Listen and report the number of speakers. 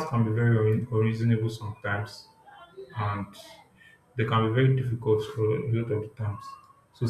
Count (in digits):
1